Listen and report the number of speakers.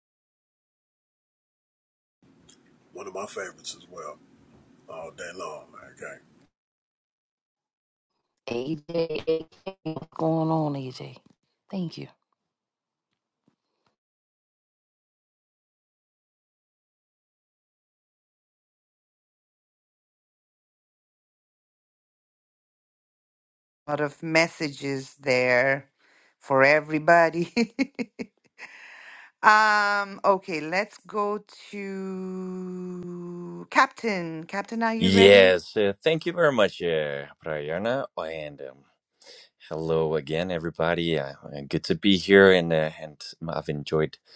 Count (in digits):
4